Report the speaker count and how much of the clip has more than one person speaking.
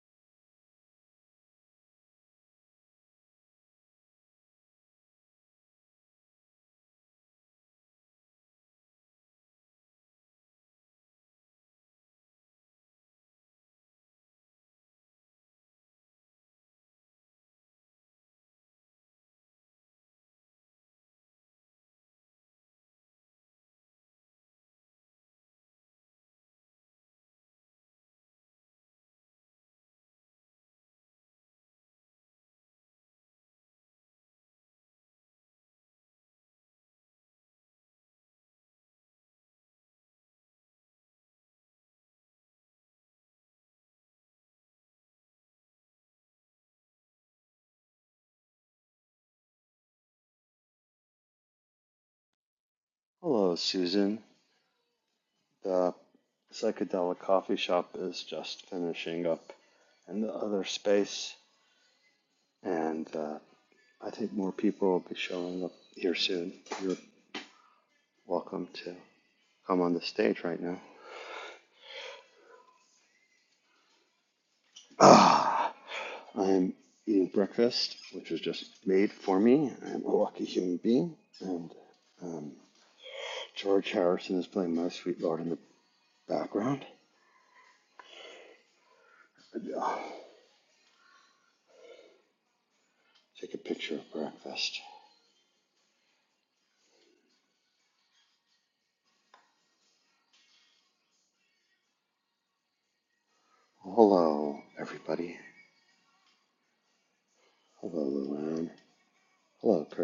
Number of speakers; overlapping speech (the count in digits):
1, no overlap